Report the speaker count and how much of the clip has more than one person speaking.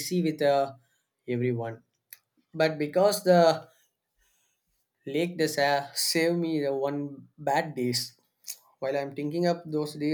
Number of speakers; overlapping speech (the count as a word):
one, no overlap